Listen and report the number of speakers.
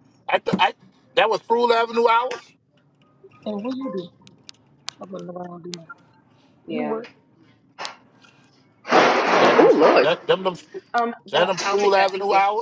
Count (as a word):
three